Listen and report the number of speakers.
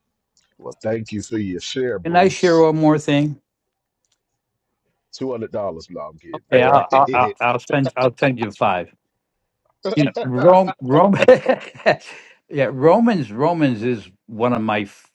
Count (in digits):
2